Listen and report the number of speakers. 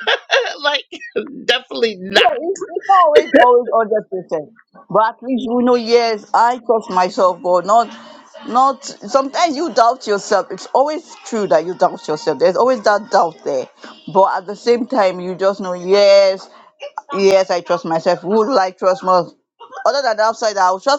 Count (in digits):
2